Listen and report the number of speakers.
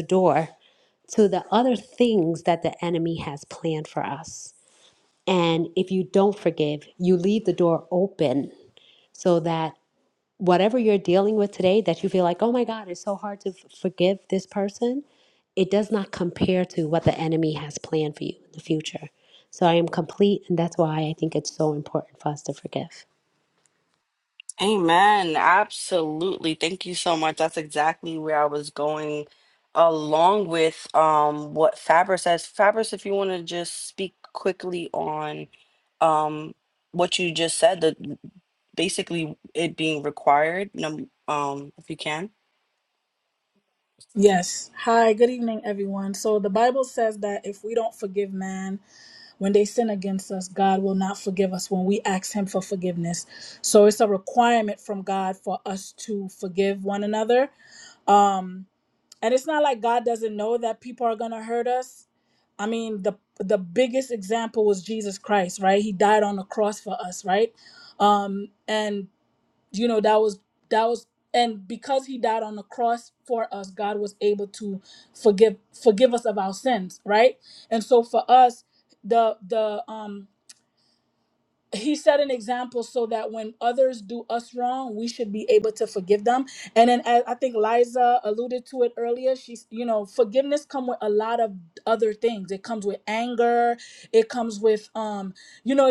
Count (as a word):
three